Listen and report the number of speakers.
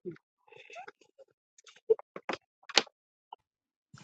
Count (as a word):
zero